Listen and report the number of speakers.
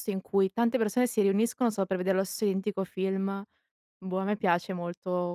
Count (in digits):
1